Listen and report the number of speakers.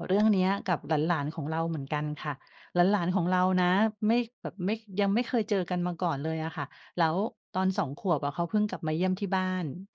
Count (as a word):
one